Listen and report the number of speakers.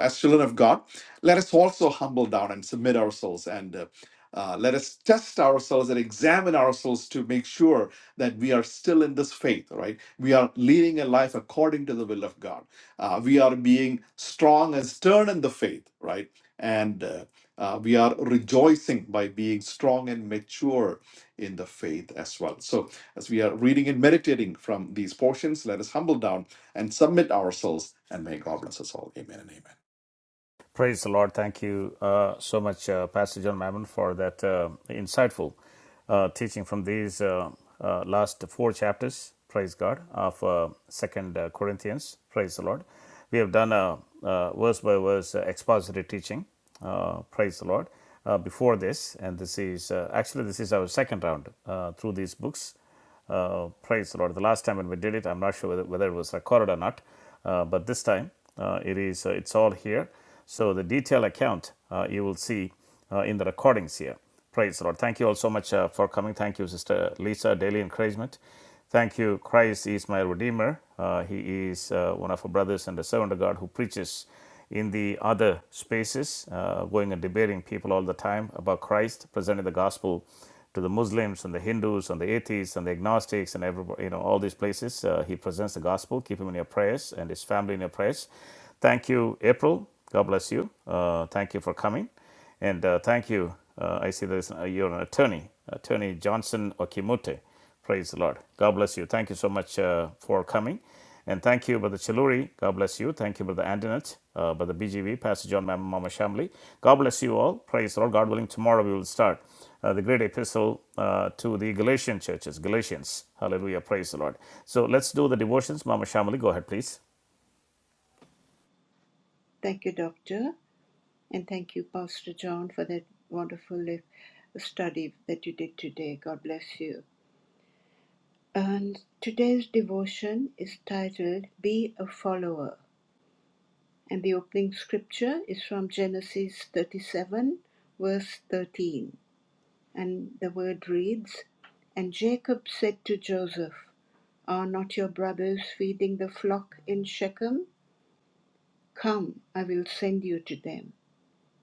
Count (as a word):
three